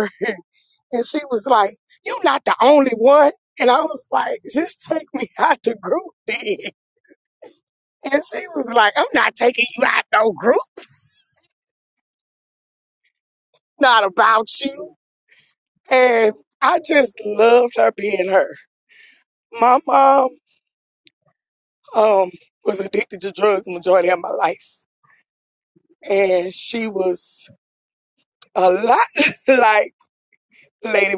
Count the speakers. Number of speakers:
1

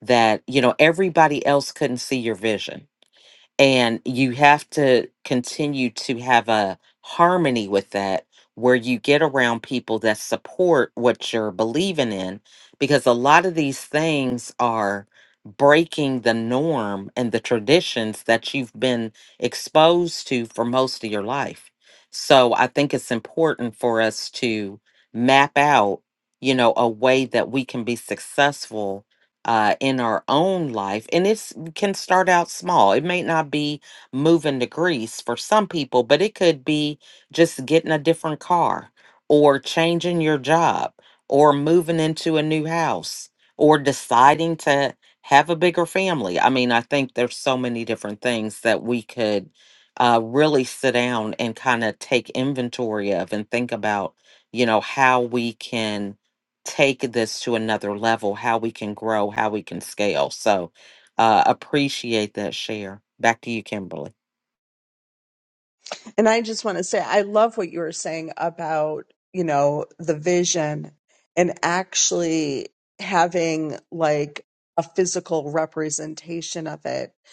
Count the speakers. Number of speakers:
2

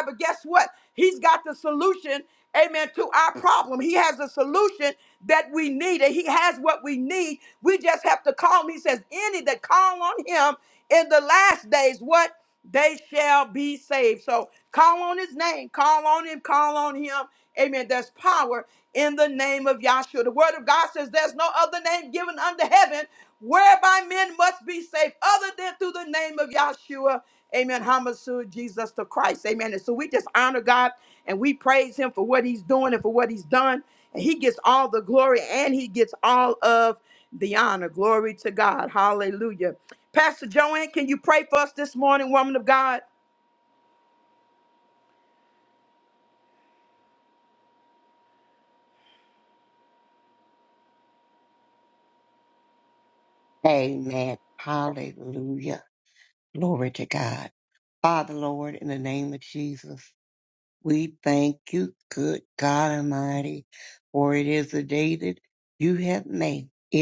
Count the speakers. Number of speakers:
2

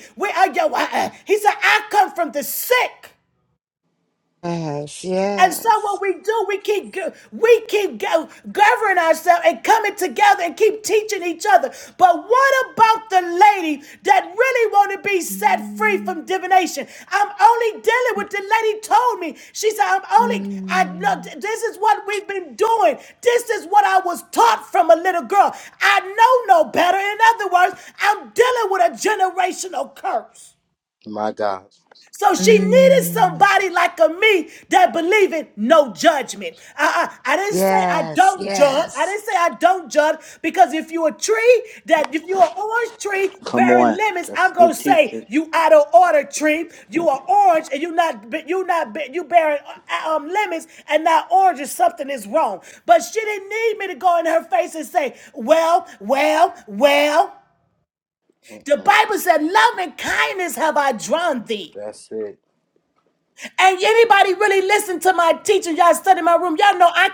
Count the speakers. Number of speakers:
3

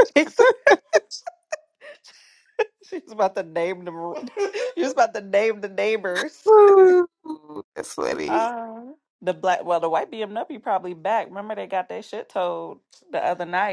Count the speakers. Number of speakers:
2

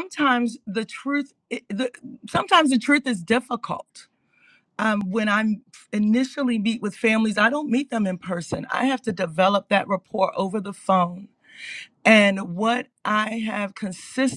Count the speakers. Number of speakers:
1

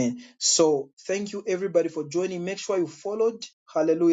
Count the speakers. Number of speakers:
1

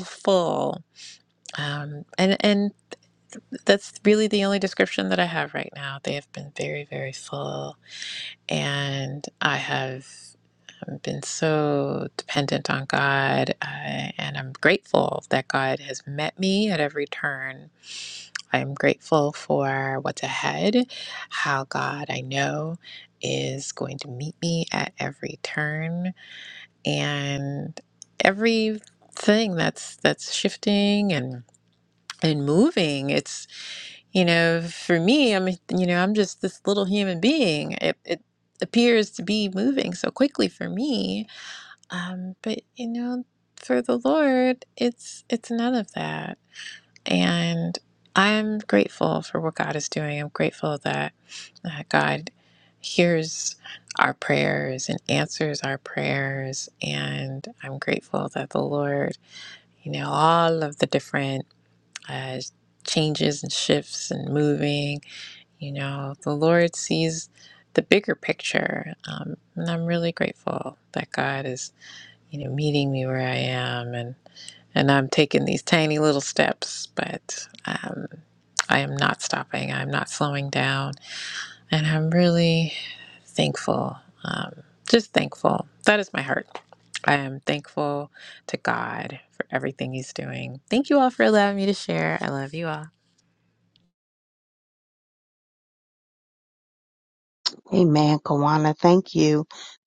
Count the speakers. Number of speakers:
2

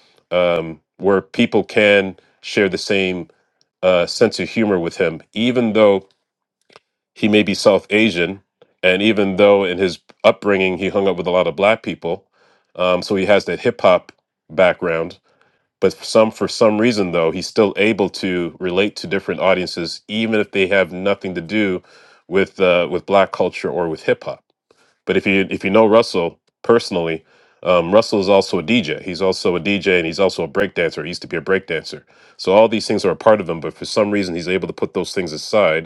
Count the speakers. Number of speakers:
1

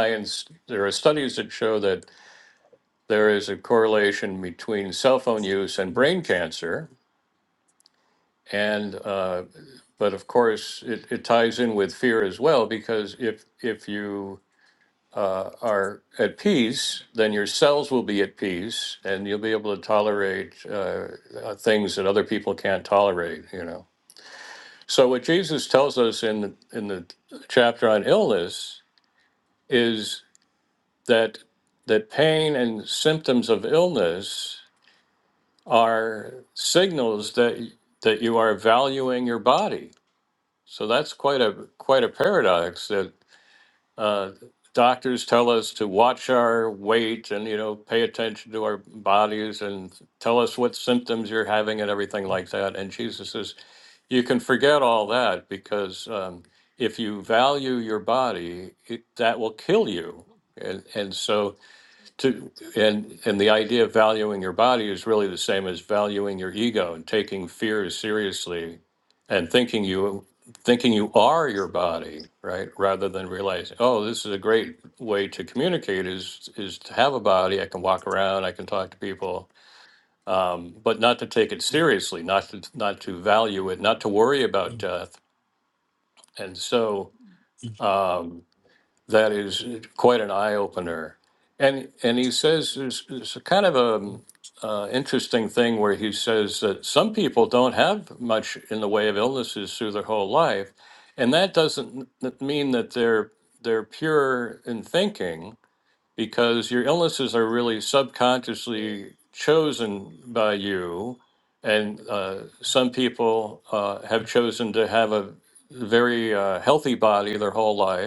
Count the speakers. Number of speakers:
1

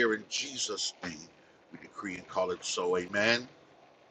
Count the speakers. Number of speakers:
1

